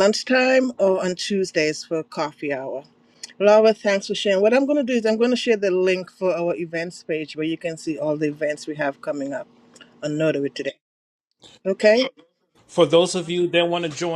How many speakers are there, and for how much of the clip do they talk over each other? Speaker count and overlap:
two, no overlap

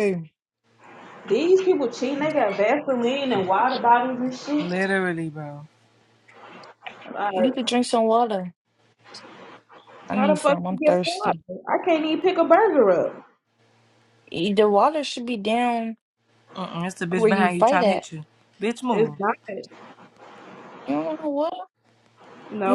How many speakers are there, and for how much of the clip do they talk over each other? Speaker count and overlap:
three, about 13%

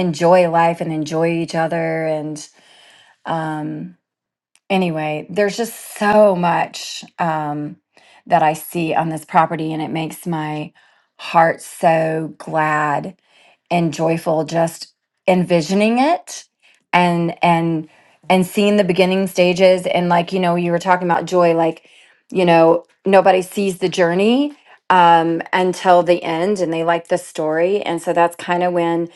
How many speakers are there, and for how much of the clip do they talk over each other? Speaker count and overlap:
one, no overlap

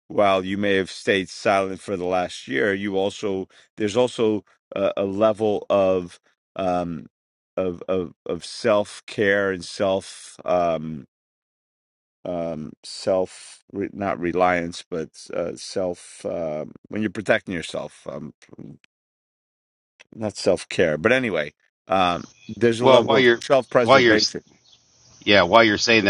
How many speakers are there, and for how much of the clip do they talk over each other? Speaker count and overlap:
two, about 4%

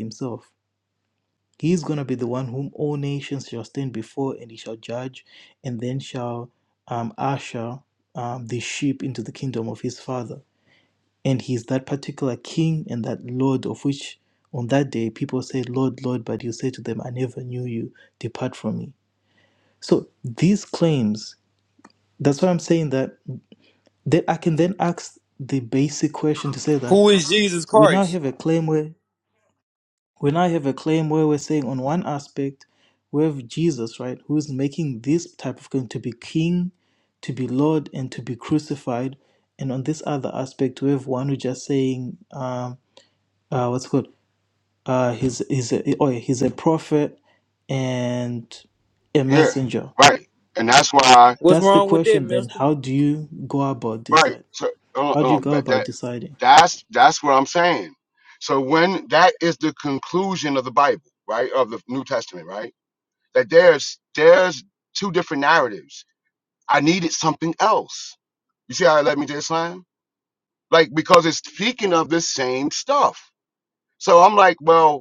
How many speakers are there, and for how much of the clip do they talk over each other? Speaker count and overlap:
three, about 4%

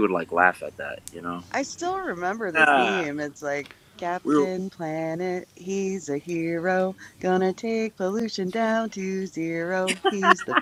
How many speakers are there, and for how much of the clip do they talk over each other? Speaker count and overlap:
two, about 8%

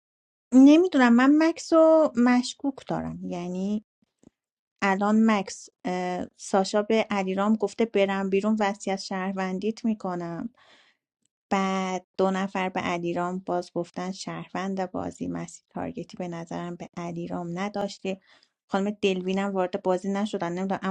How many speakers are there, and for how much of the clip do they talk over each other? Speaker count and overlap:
one, no overlap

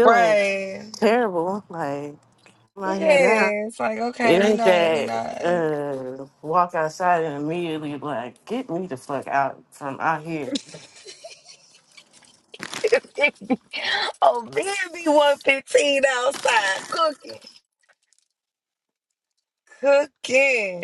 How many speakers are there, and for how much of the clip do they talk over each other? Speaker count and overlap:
two, about 11%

